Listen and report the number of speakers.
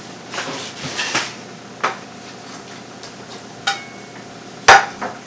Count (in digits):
0